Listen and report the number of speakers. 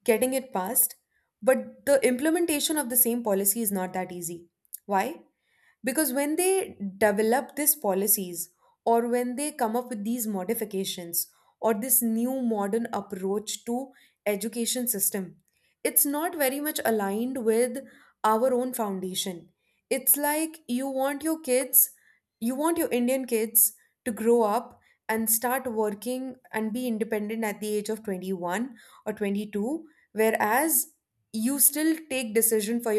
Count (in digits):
1